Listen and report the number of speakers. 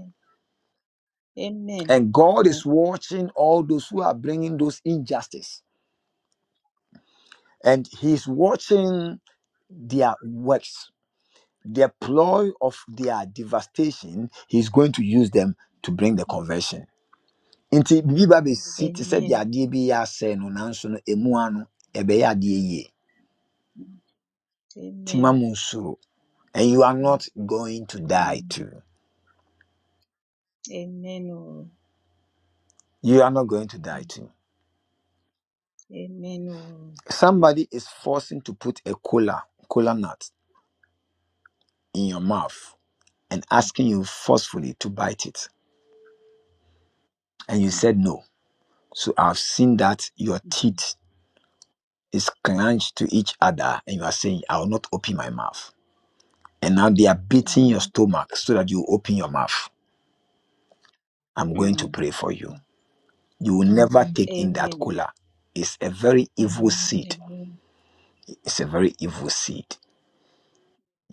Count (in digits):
2